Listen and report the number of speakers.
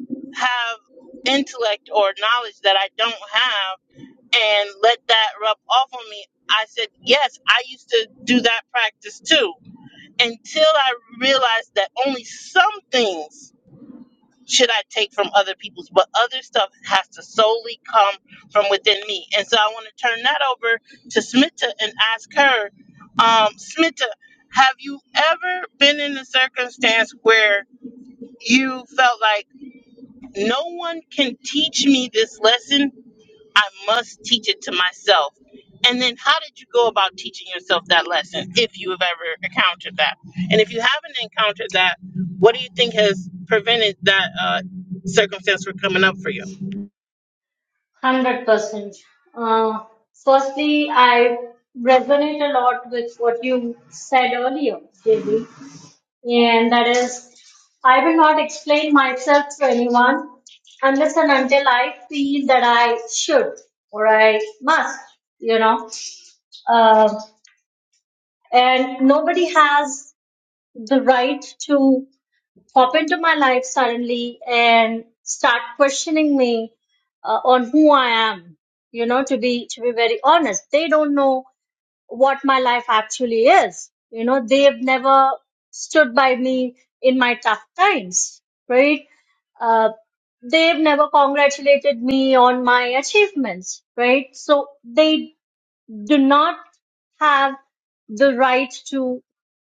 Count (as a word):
two